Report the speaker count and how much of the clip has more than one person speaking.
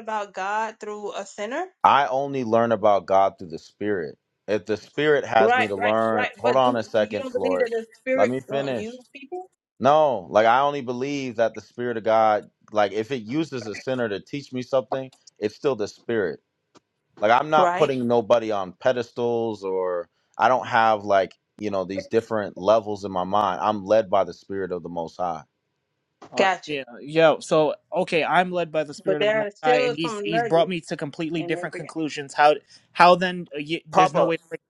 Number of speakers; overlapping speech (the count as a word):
three, about 18%